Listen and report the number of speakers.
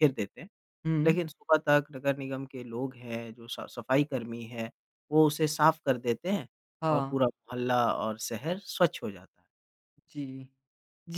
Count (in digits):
2